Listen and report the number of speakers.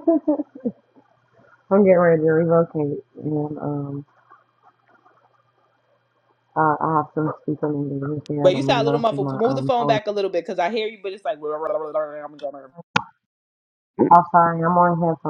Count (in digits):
2